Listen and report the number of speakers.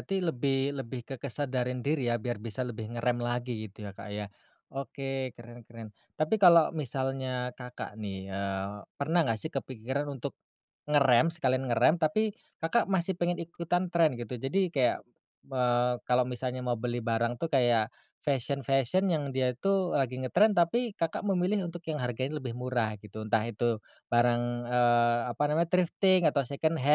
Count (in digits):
1